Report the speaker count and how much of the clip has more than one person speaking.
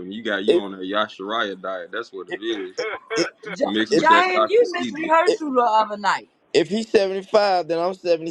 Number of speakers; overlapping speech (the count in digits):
3, about 22%